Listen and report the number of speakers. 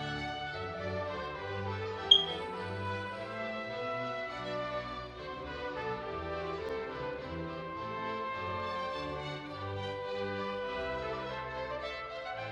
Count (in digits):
0